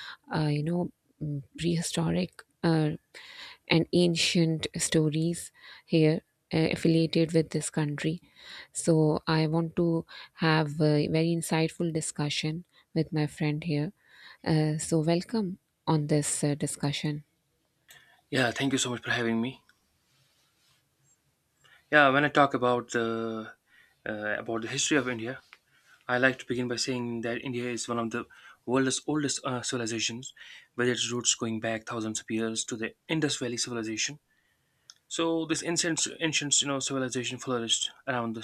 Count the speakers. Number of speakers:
two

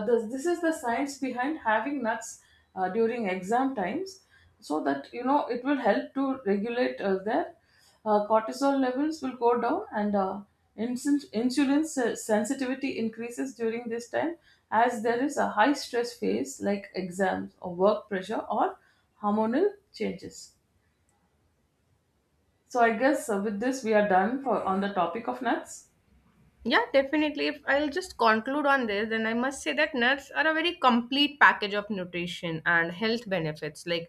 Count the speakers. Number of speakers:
two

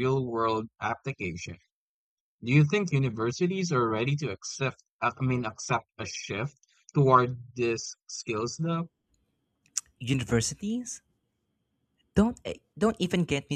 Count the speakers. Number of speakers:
two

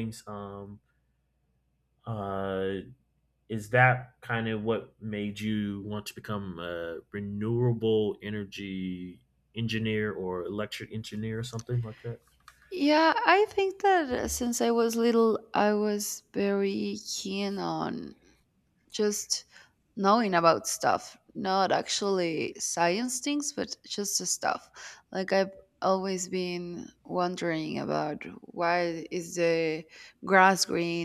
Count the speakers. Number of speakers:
two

